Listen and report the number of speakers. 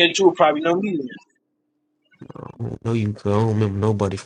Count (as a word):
two